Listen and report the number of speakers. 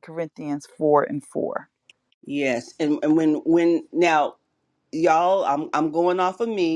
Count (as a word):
two